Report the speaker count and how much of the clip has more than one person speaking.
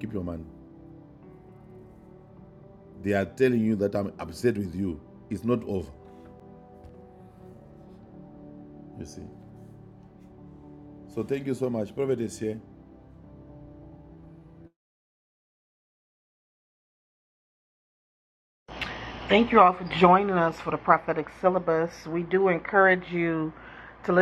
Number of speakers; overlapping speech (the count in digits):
2, no overlap